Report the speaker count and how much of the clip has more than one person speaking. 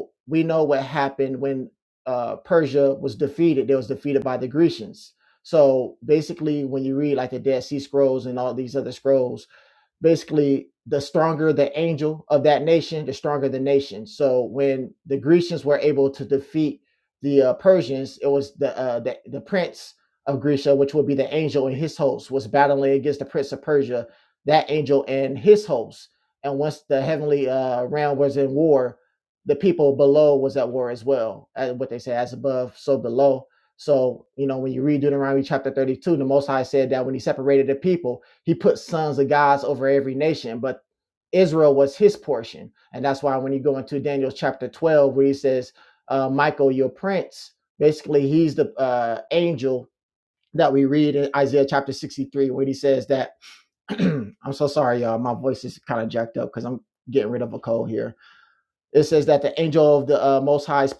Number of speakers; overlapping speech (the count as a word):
one, no overlap